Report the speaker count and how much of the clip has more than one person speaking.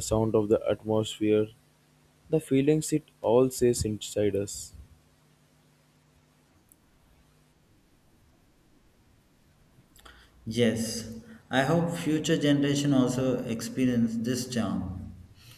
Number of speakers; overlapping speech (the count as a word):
two, no overlap